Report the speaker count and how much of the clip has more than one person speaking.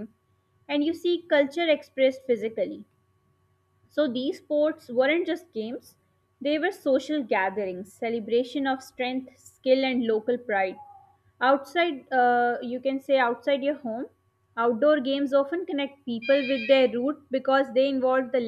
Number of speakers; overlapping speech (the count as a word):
one, no overlap